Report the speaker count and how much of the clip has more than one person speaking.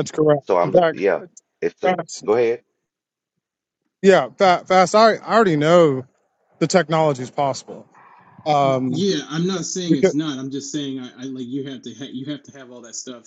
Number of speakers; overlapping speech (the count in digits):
3, about 9%